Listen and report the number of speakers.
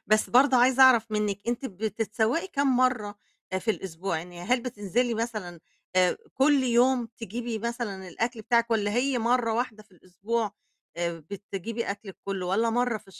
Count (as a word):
one